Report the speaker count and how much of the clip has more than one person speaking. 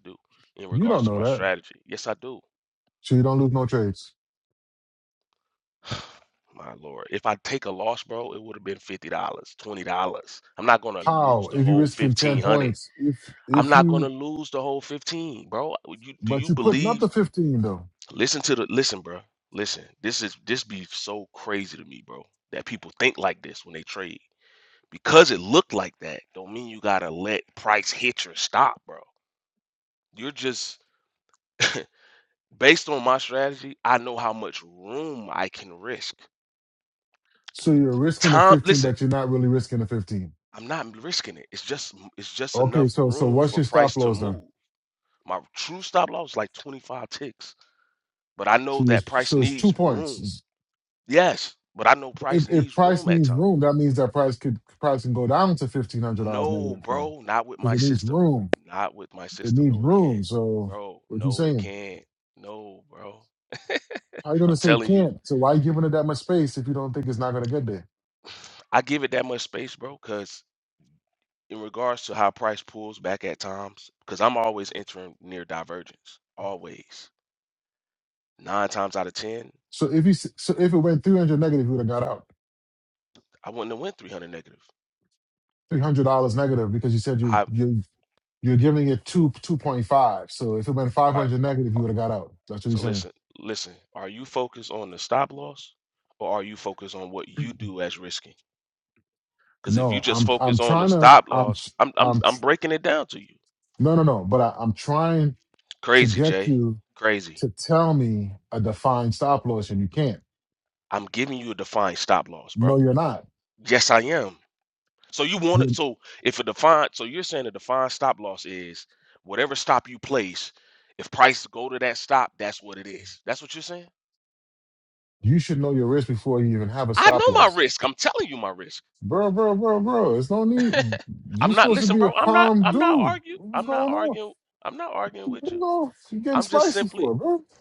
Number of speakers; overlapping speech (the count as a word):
two, about 15%